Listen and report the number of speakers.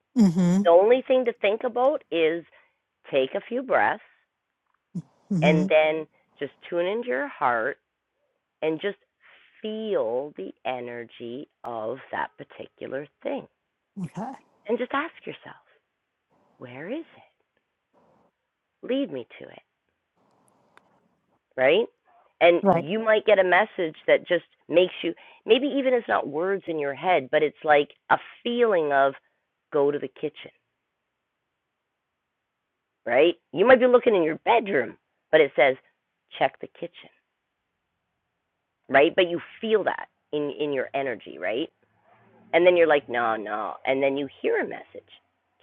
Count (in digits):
2